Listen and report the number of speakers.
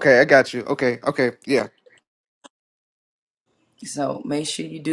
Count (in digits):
2